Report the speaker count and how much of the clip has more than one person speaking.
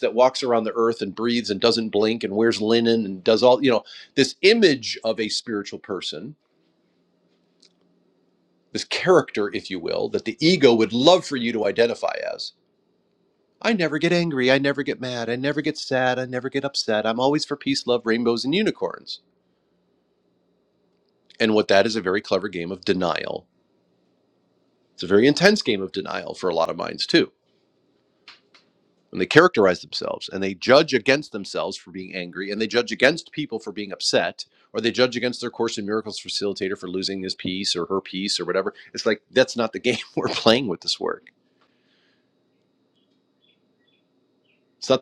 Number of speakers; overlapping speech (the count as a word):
one, no overlap